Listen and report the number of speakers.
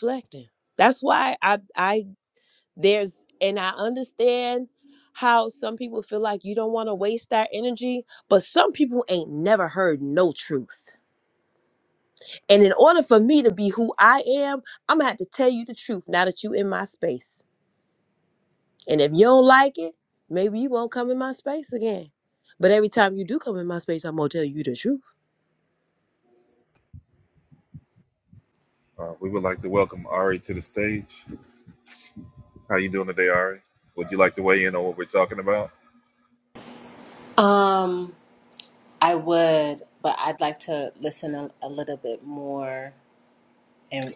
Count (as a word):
three